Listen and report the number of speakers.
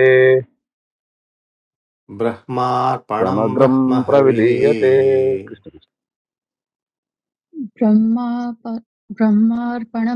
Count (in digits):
3